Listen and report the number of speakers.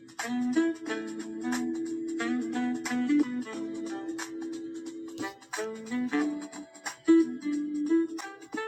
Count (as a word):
zero